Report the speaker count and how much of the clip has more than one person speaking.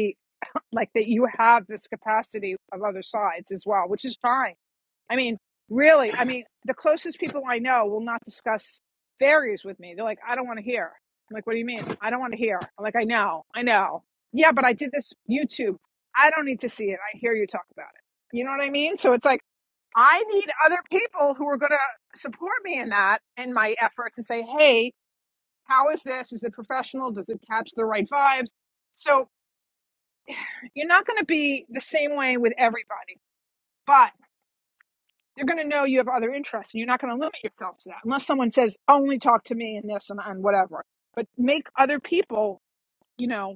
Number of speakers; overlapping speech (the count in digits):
1, no overlap